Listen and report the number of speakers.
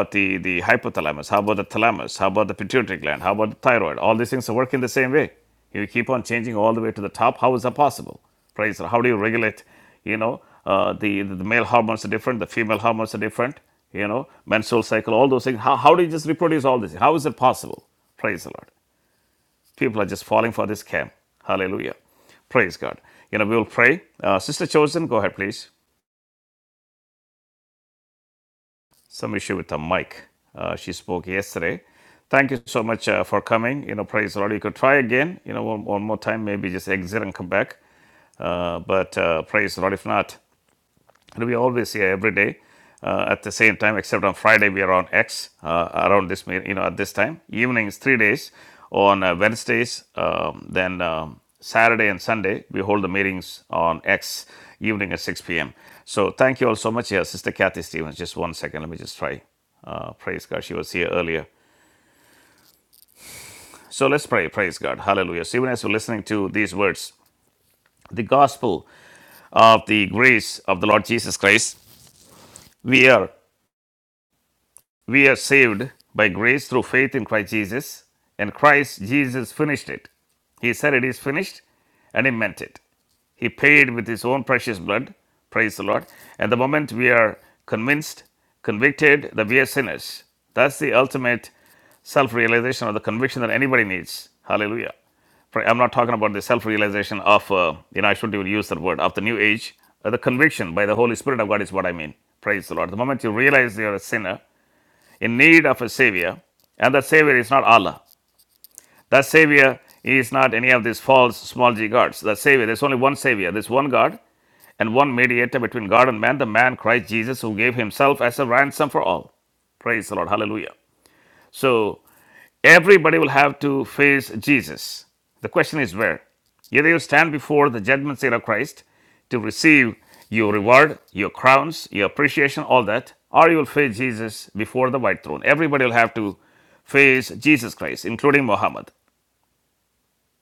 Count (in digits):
1